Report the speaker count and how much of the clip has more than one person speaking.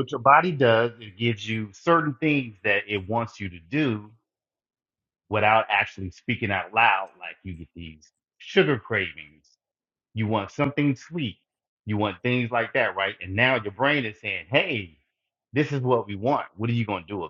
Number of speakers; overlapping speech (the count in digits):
1, no overlap